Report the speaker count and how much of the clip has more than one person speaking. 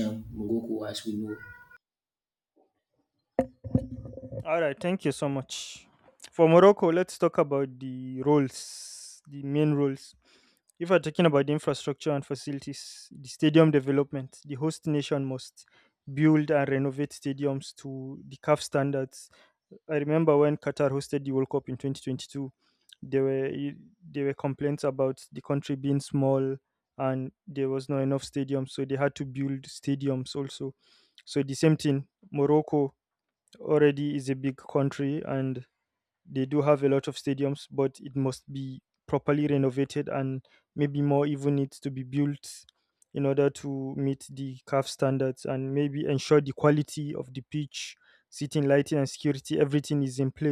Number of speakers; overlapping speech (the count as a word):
two, no overlap